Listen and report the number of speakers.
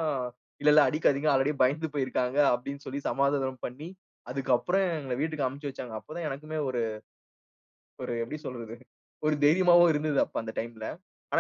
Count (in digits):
1